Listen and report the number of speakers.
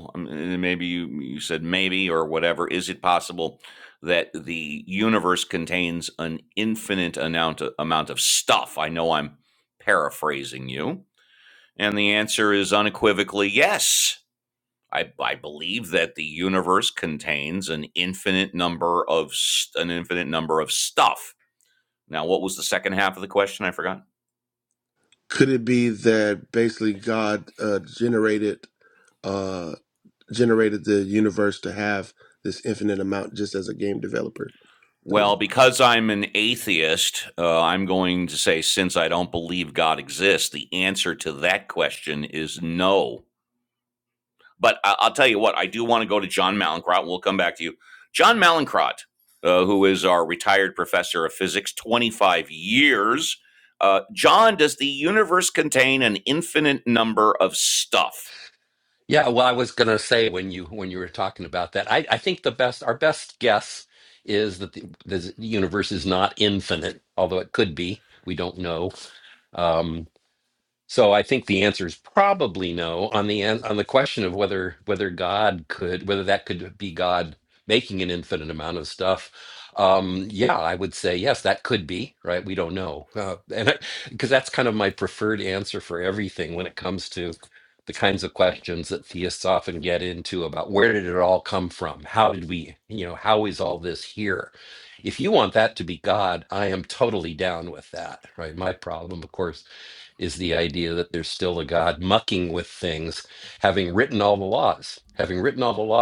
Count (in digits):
3